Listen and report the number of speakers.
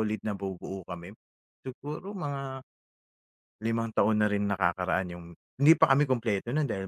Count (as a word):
one